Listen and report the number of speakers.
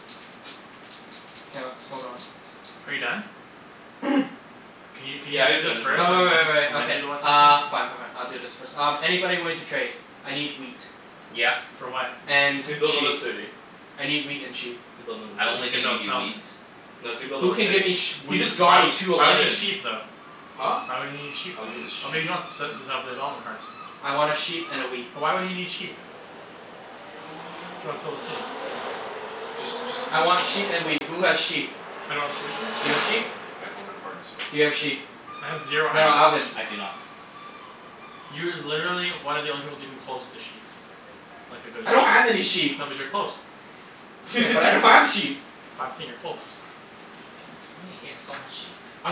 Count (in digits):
4